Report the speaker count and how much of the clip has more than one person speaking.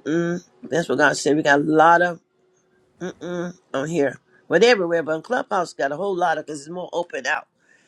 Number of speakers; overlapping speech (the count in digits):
1, no overlap